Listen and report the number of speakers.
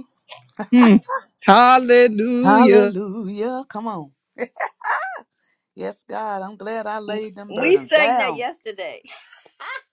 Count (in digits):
3